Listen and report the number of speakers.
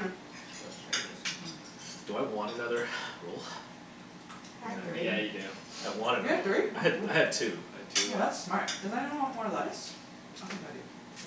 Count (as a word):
four